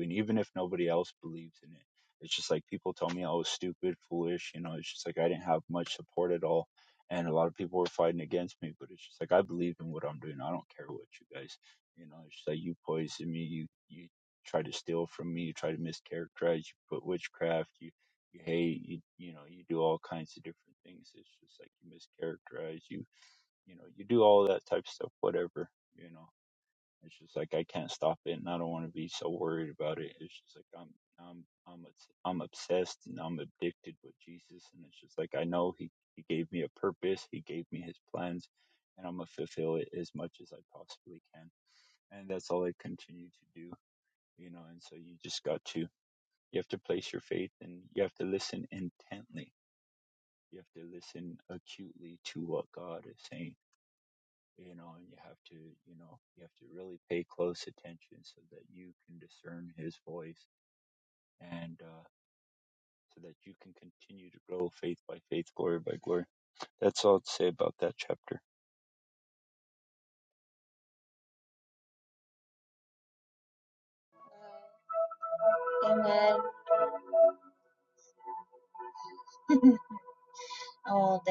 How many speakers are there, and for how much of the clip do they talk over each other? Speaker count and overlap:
2, no overlap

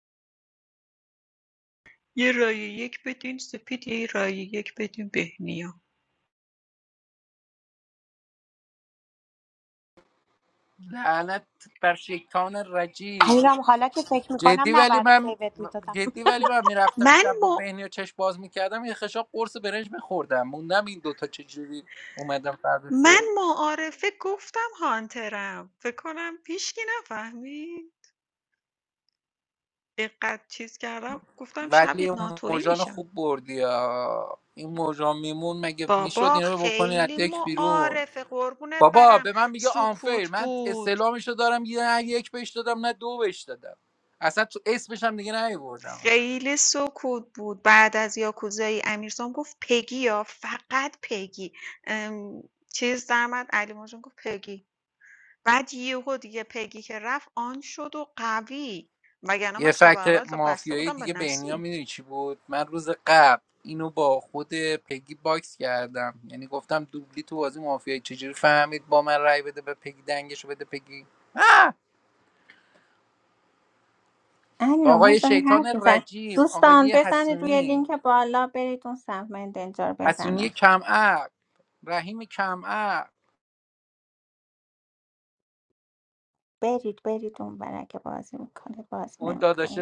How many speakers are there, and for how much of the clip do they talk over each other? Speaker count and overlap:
4, about 15%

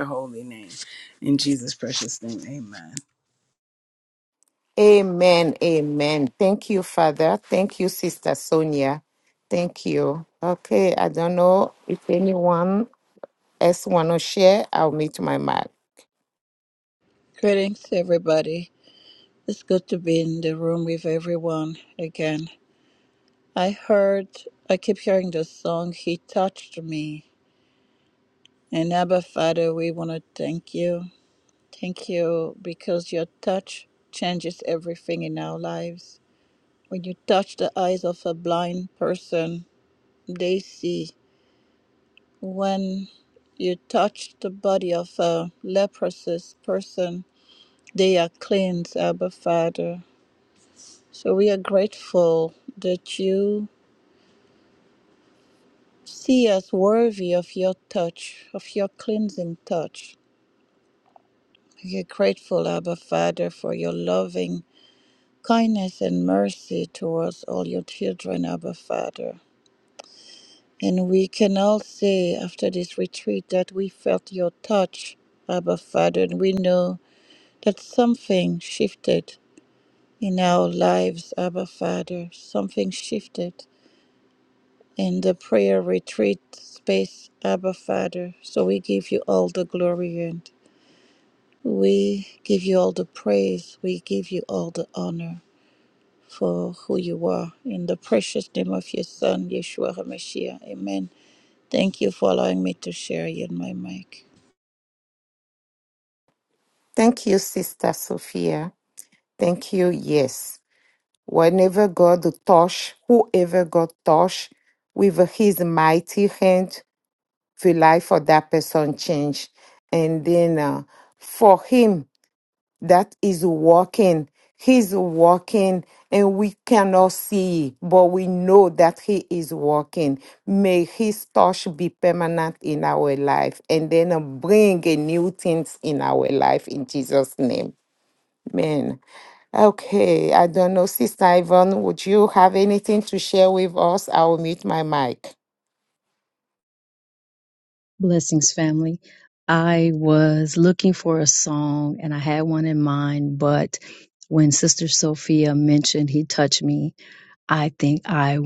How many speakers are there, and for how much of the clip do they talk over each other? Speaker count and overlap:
4, no overlap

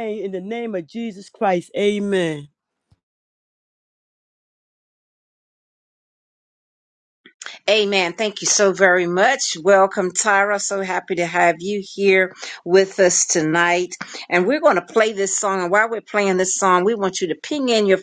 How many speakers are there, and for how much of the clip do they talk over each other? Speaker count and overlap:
2, no overlap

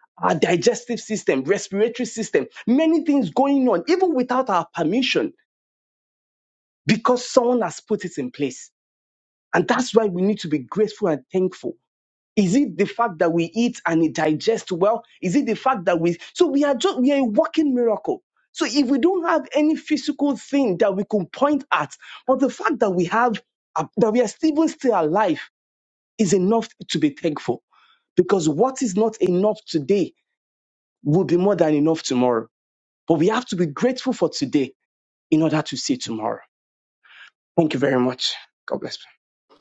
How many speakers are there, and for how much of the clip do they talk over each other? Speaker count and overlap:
1, no overlap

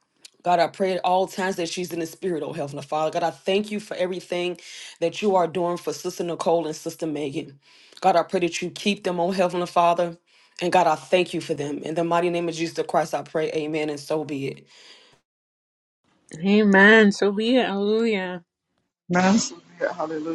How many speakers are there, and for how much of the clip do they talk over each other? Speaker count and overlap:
3, no overlap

